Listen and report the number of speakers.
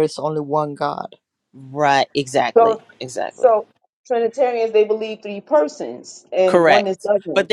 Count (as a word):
three